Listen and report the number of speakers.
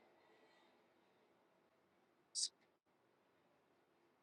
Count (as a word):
zero